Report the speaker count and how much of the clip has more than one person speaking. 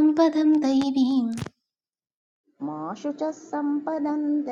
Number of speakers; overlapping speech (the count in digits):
2, no overlap